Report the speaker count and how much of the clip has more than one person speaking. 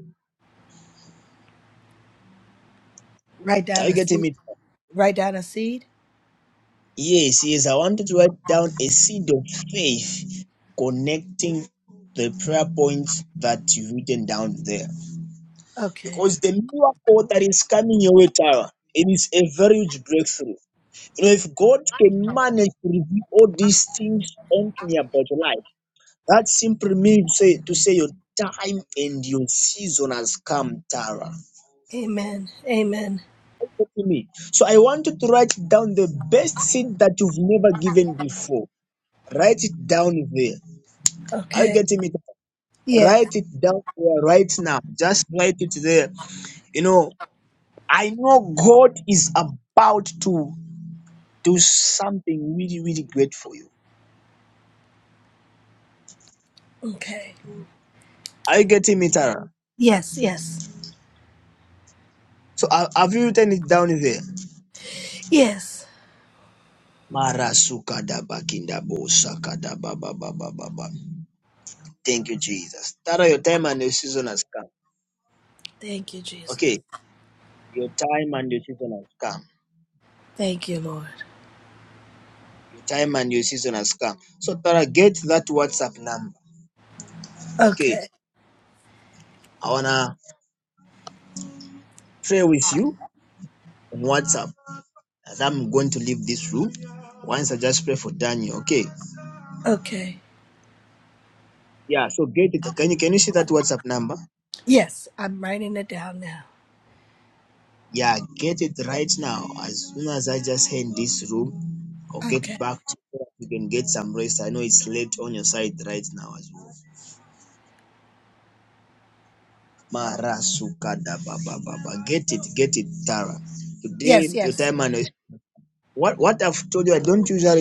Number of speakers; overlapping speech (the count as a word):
two, about 2%